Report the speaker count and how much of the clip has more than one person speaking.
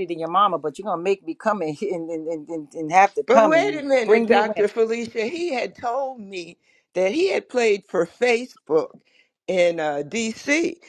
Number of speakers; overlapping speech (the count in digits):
2, about 12%